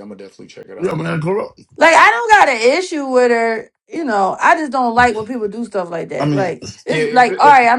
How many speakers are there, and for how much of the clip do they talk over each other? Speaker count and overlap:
3, about 17%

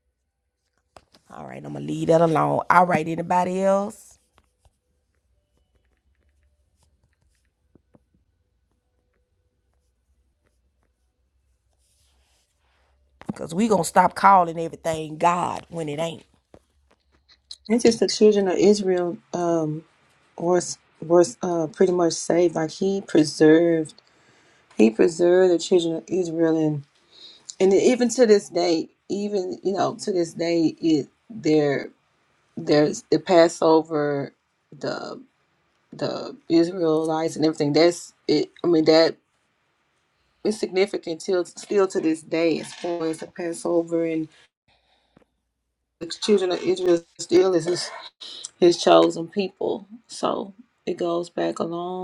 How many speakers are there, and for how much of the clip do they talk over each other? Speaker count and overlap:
2, no overlap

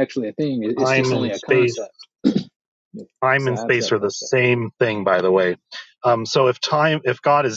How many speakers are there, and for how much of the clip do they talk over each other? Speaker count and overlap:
2, about 24%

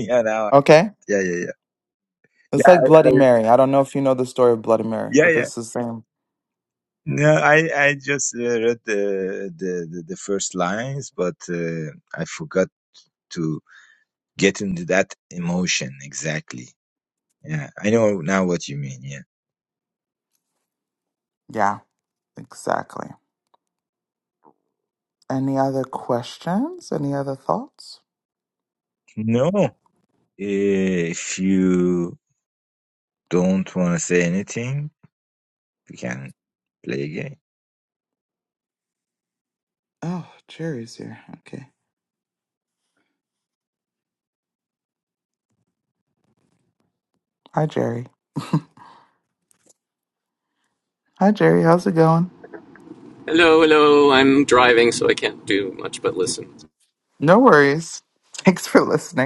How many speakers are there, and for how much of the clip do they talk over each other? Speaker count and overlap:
3, about 2%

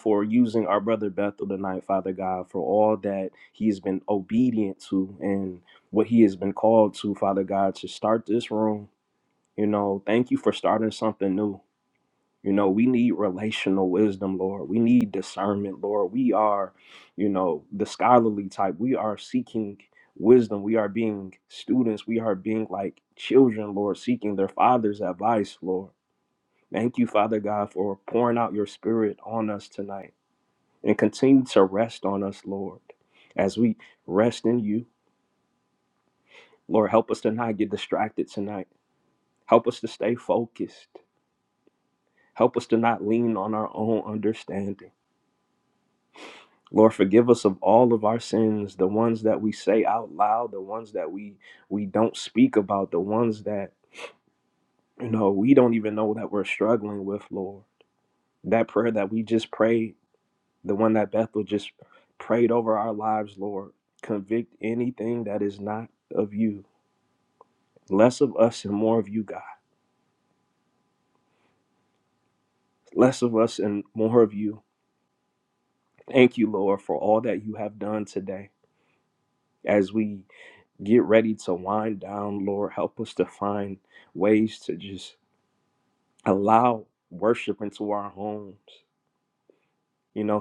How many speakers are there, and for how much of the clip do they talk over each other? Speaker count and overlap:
1, no overlap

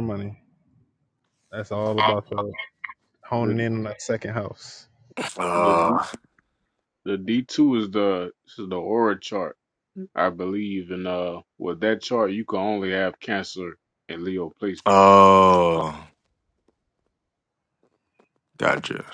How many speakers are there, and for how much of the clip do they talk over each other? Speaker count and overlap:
3, about 5%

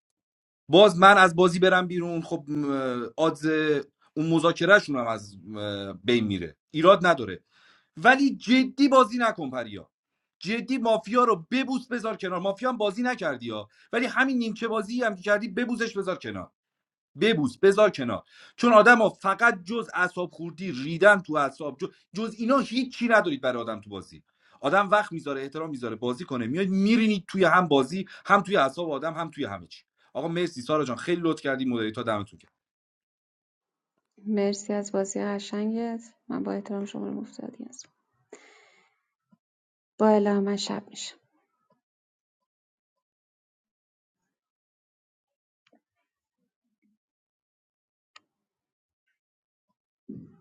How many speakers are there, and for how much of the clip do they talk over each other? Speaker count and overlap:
2, no overlap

